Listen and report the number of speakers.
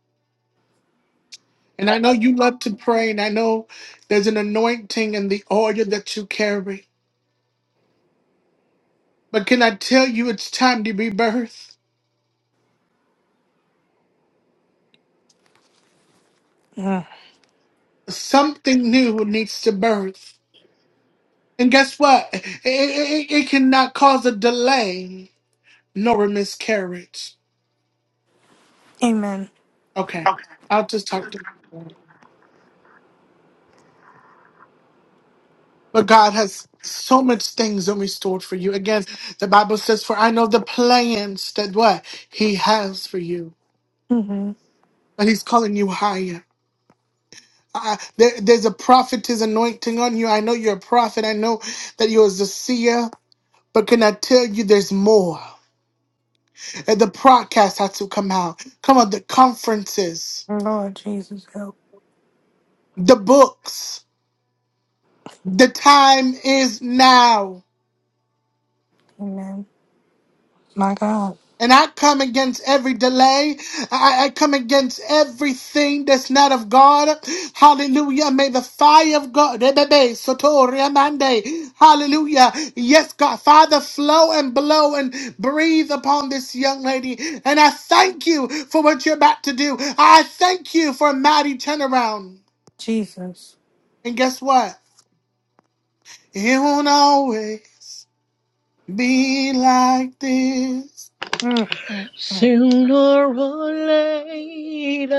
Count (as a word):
three